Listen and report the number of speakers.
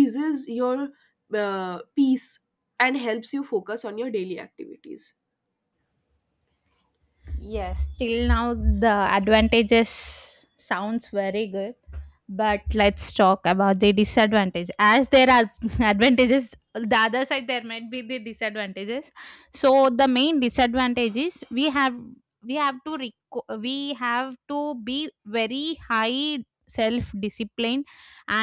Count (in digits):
2